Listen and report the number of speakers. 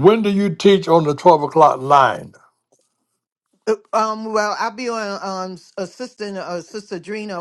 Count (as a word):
two